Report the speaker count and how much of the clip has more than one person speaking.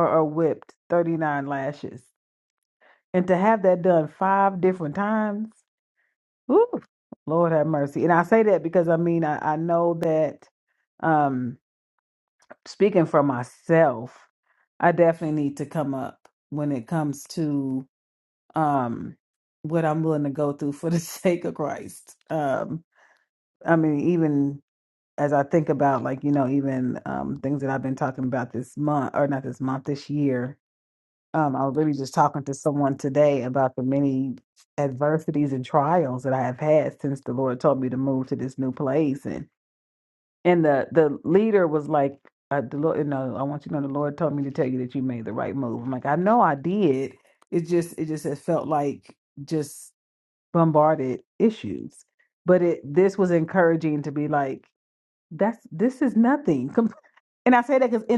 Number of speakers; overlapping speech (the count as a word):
one, no overlap